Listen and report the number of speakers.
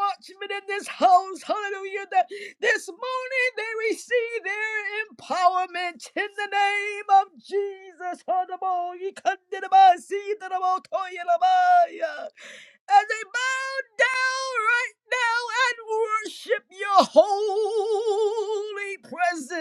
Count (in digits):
1